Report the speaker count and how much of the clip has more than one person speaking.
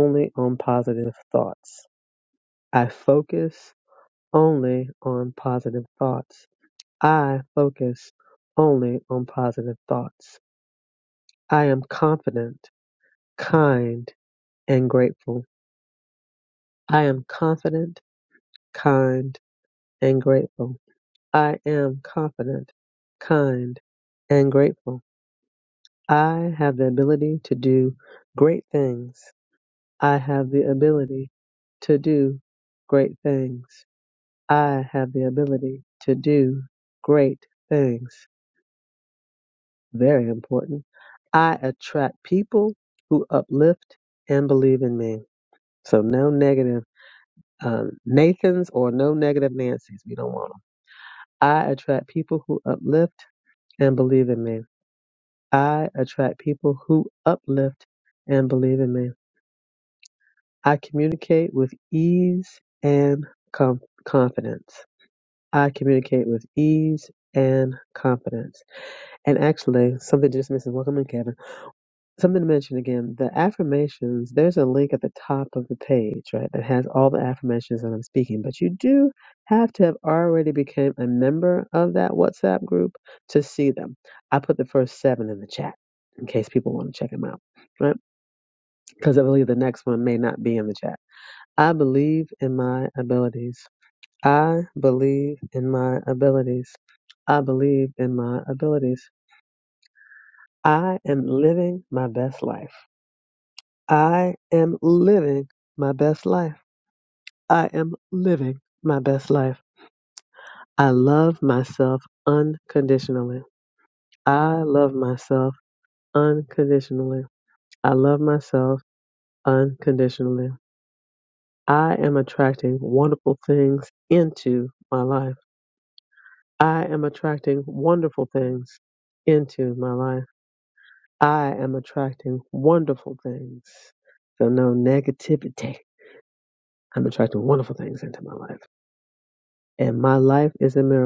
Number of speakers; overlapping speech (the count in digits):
1, no overlap